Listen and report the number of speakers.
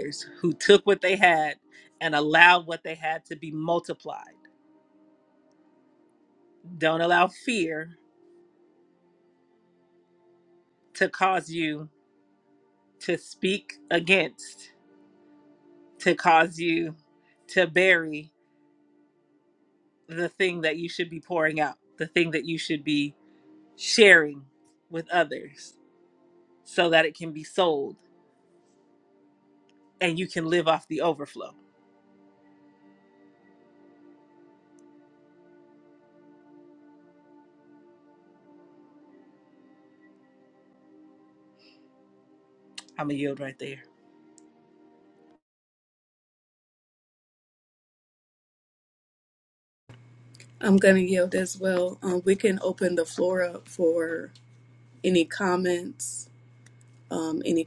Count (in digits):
2